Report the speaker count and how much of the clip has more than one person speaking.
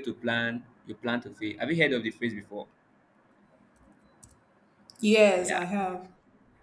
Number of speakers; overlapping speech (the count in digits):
2, about 5%